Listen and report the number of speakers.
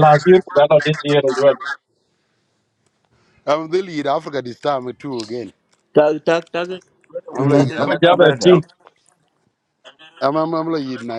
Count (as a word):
three